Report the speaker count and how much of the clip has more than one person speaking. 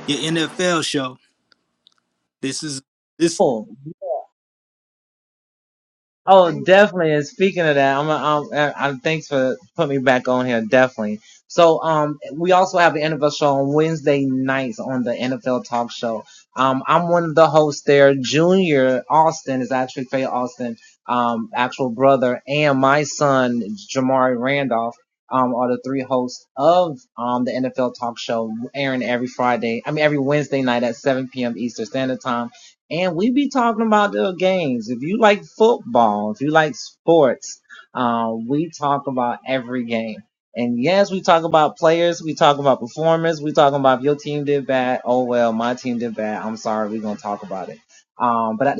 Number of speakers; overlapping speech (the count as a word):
two, no overlap